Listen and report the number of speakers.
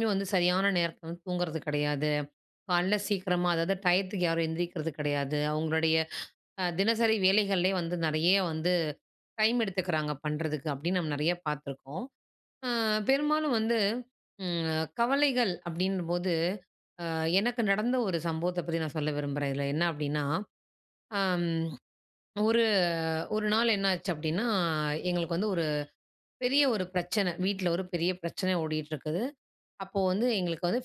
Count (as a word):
one